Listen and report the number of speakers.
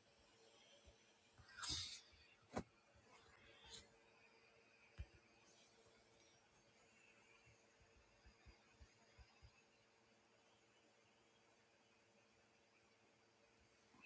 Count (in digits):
0